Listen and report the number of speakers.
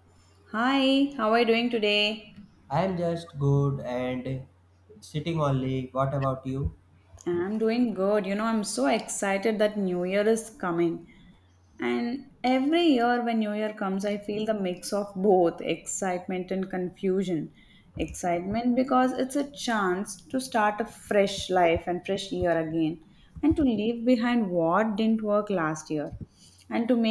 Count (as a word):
two